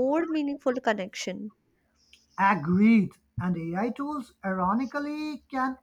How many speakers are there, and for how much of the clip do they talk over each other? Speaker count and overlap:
two, no overlap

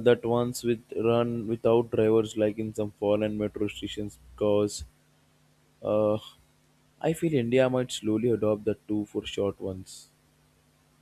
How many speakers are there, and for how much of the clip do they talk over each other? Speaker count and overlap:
one, no overlap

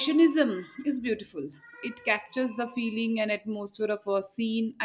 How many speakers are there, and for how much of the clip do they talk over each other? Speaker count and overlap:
one, no overlap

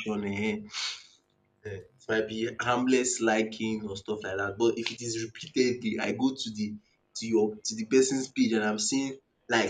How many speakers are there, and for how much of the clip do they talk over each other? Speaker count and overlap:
one, no overlap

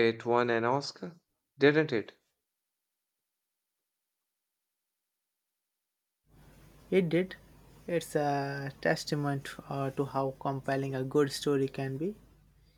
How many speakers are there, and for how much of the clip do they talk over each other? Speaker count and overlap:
two, no overlap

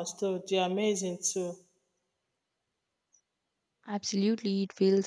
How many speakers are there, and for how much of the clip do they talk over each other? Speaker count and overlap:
two, no overlap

